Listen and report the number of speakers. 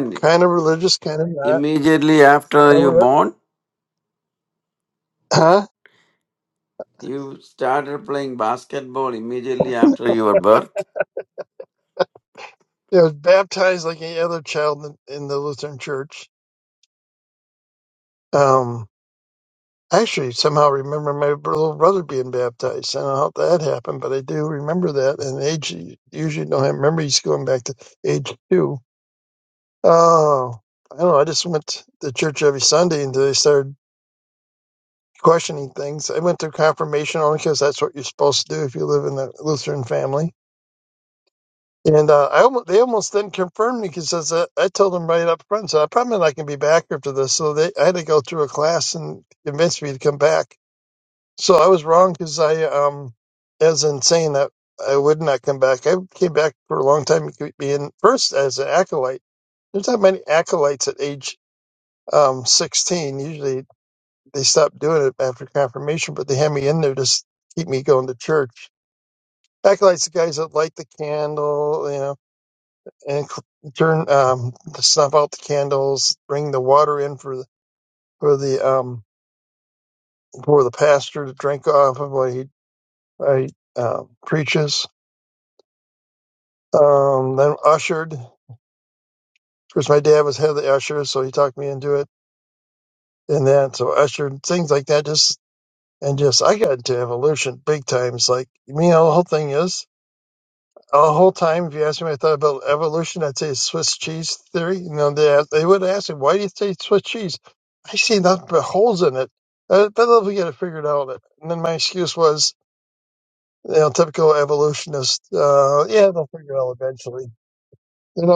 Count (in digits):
2